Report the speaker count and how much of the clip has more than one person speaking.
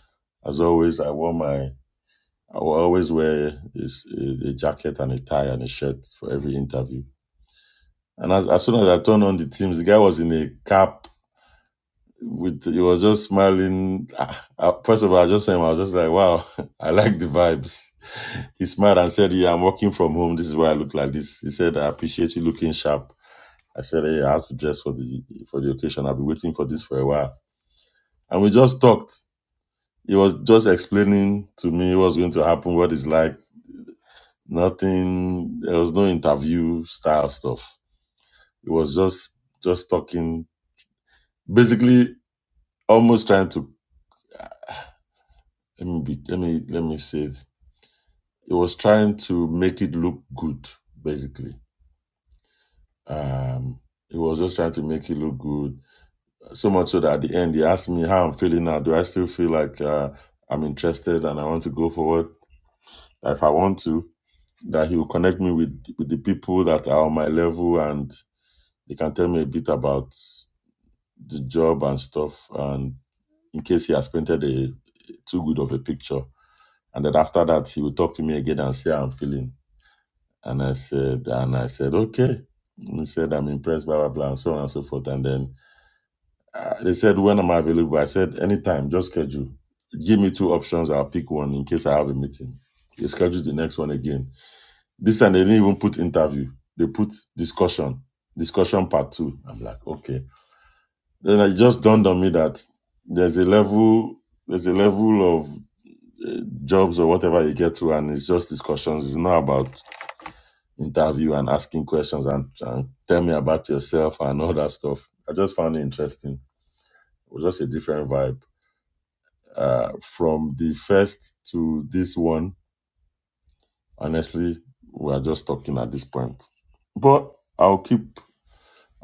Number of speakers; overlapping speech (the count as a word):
one, no overlap